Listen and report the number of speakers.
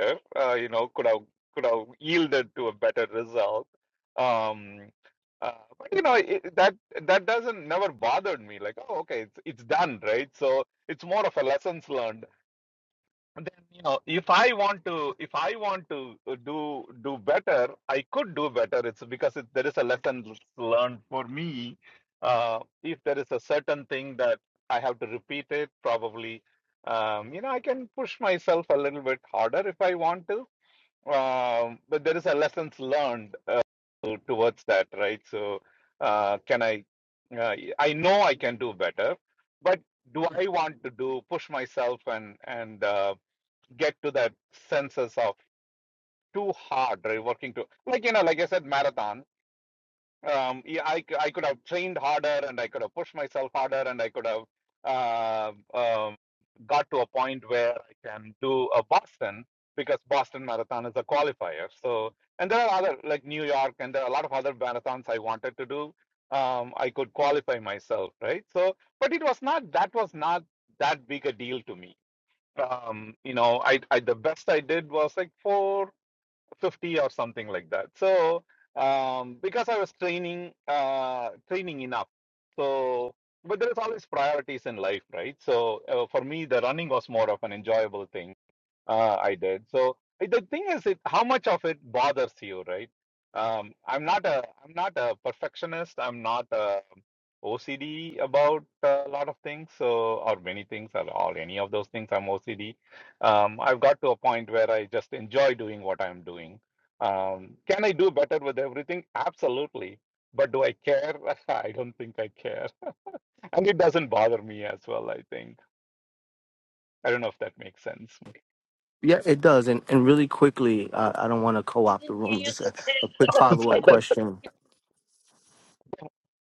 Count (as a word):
two